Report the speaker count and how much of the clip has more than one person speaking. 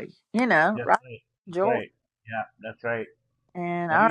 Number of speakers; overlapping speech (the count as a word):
two, about 14%